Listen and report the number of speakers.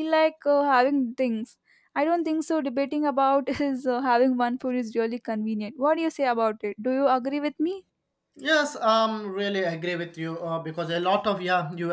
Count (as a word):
two